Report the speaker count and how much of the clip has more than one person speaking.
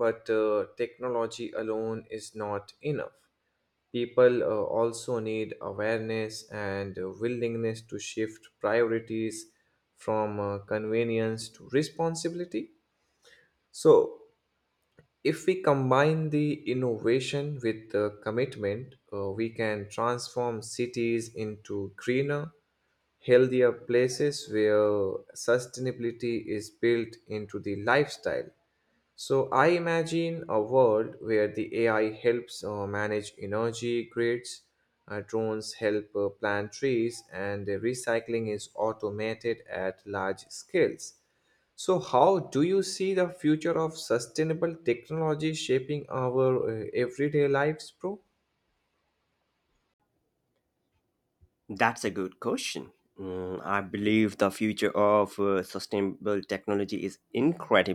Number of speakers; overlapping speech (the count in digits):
2, no overlap